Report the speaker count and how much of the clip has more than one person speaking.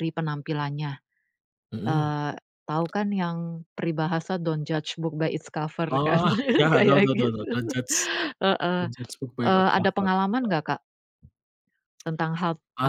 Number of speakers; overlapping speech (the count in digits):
2, about 18%